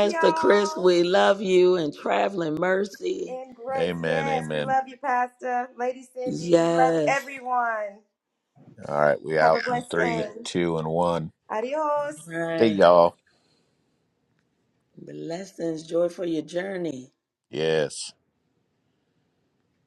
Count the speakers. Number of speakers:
3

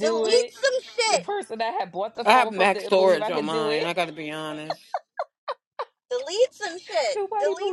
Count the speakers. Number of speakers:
3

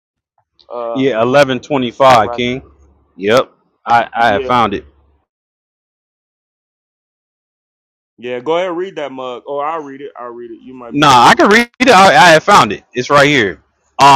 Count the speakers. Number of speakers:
2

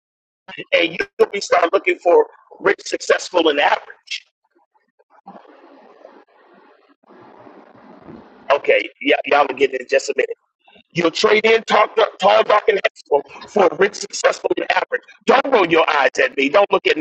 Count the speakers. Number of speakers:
1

